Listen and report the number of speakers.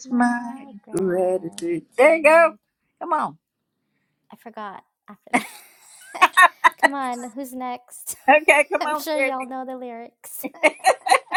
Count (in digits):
2